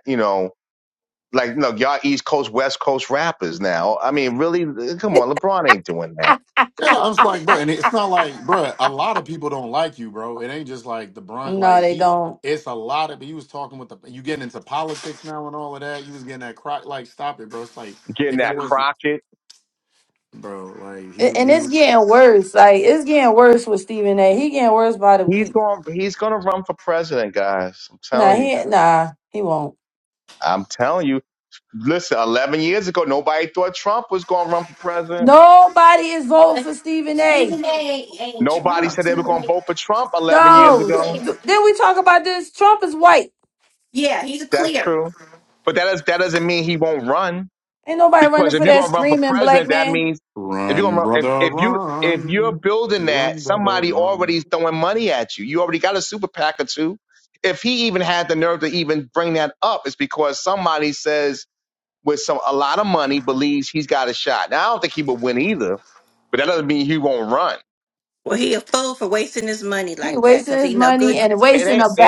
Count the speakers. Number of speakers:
4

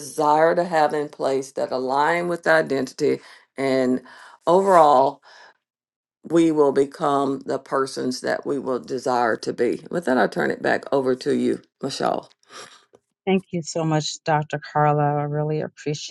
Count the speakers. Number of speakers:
2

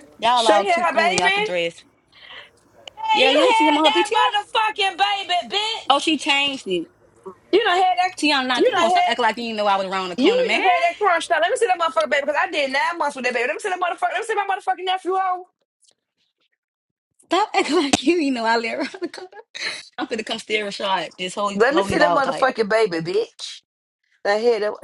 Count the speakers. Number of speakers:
2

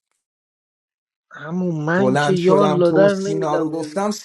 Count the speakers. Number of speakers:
2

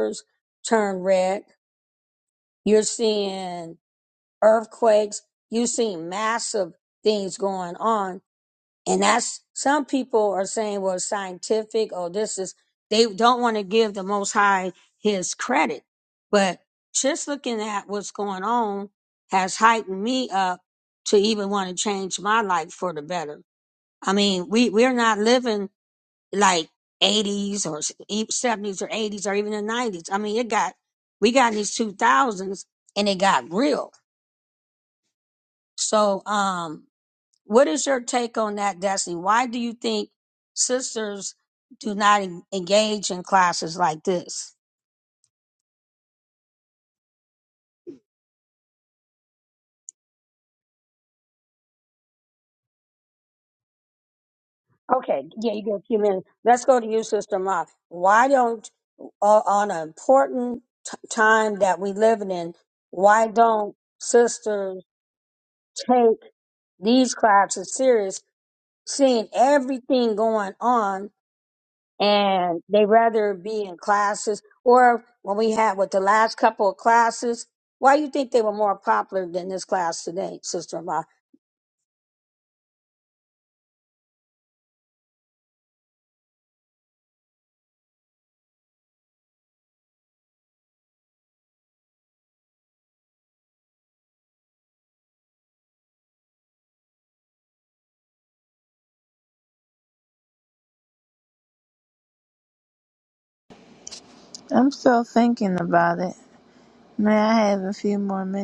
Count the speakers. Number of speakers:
2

